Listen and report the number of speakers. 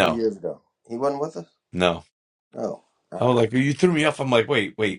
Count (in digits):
2